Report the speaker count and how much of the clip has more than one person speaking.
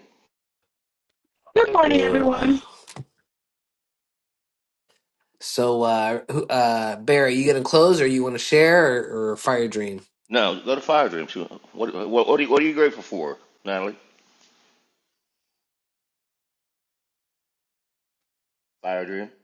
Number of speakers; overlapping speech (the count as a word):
three, about 3%